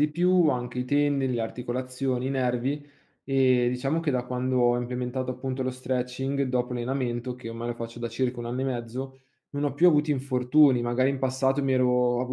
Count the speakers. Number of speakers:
1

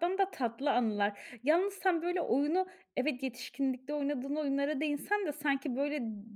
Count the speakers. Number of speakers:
1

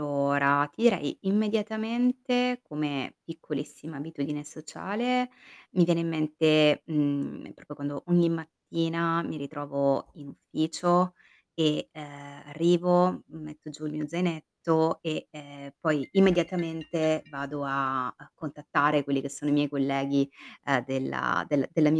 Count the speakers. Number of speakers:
1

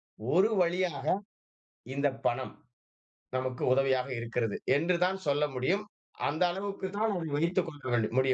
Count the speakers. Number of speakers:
1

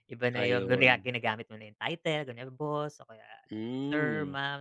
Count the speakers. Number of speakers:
2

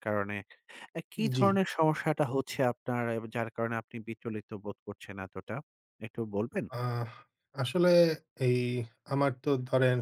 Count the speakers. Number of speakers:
2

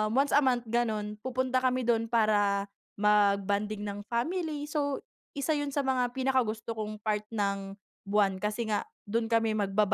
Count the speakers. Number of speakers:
1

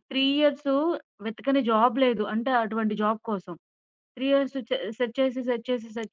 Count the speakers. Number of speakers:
1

